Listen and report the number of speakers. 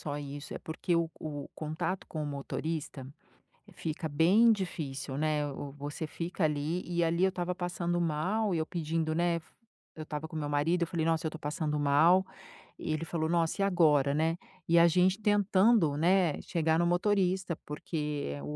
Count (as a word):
one